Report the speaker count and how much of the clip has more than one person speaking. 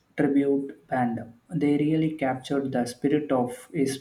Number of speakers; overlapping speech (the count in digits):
1, no overlap